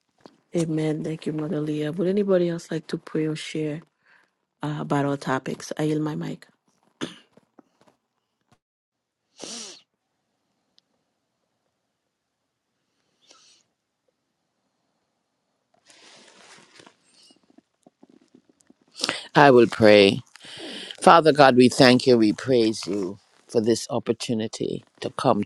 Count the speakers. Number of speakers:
two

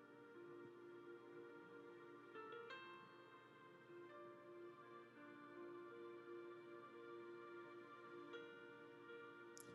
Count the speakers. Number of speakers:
zero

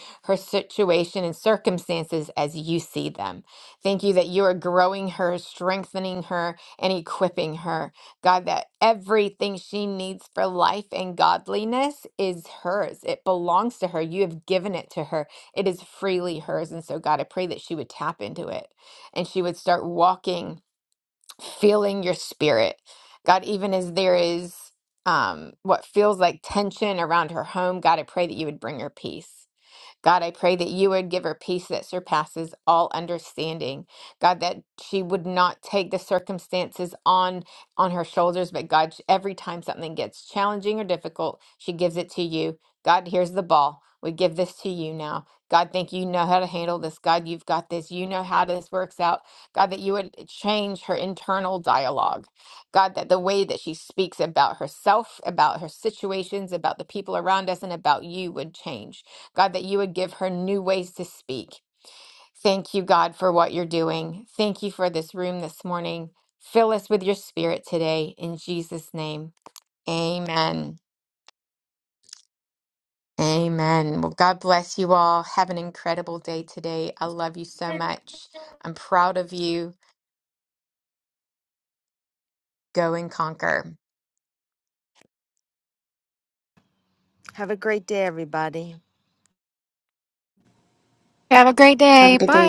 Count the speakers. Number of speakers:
three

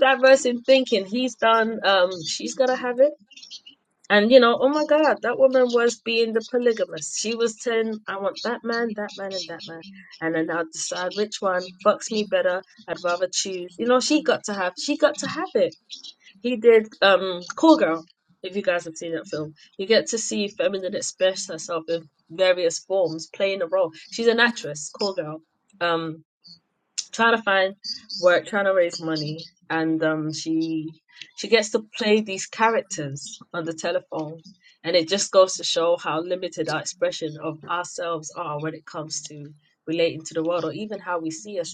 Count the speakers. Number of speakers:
one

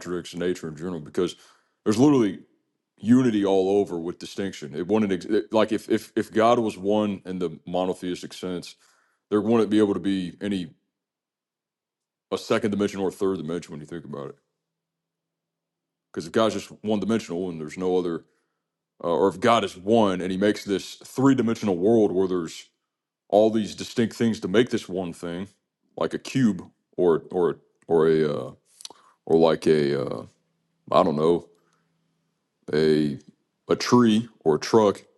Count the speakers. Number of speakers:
one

